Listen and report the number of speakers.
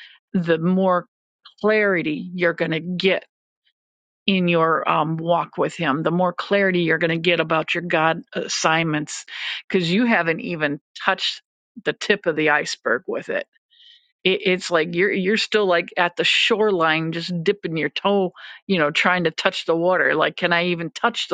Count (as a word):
one